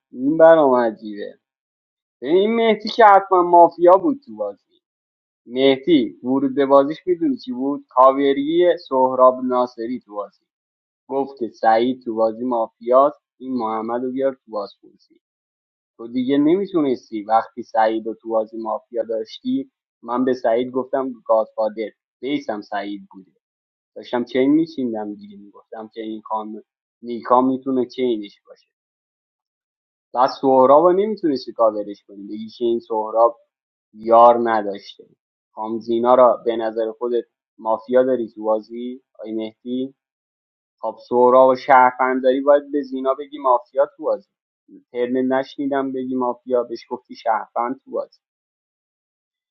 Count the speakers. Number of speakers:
1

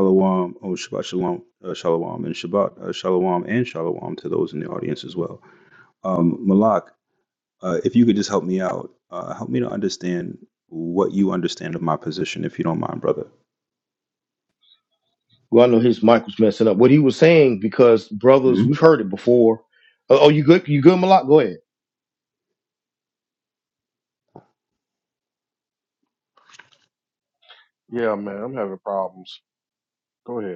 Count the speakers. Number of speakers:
3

